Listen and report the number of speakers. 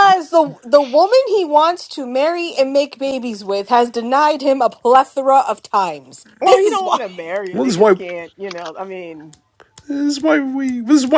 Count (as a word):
three